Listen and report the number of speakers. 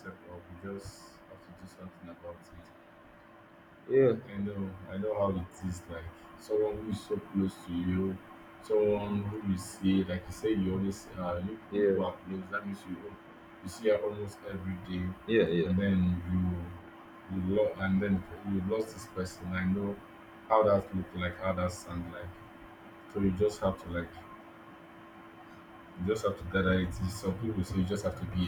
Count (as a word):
two